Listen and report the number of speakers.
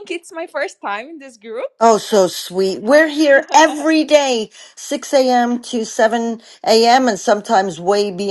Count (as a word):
two